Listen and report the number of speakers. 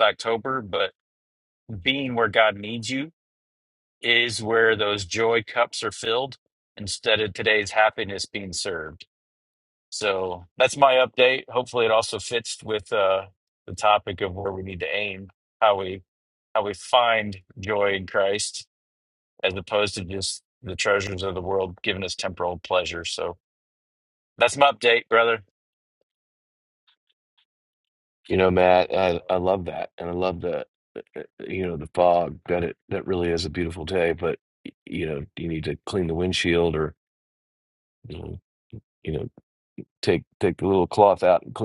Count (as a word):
two